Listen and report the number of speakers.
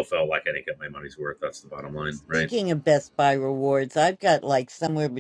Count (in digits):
2